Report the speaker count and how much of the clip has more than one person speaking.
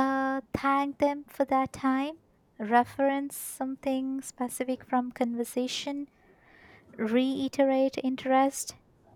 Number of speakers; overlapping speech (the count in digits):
1, no overlap